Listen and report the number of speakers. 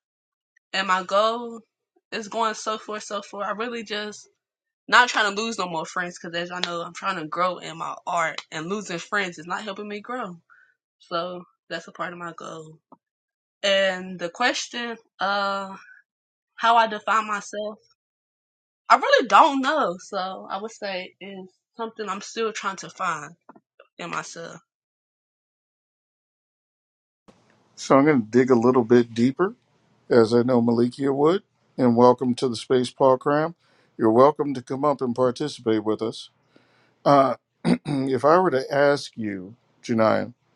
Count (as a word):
two